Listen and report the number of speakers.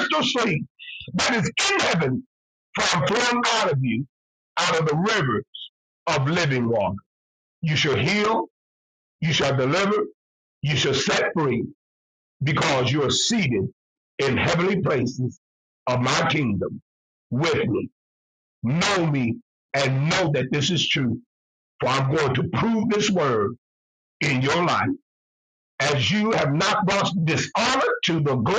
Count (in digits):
1